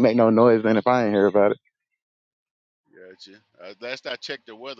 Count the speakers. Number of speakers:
2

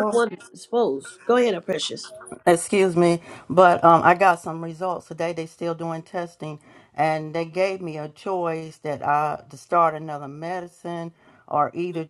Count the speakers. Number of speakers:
2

